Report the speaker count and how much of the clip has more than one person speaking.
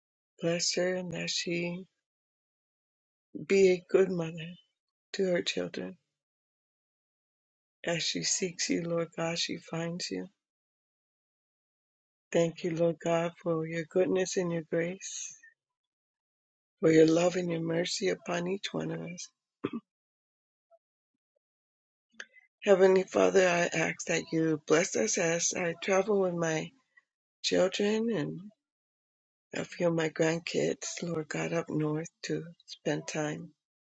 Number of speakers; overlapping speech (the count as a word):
one, no overlap